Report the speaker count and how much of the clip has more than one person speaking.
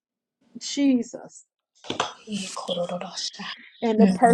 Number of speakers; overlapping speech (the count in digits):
2, about 8%